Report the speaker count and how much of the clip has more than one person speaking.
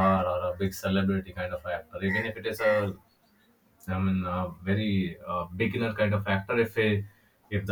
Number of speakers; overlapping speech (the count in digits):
1, no overlap